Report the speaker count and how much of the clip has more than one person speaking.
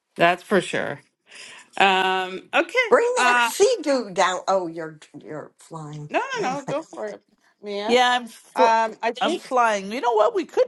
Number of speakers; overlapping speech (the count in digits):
3, about 14%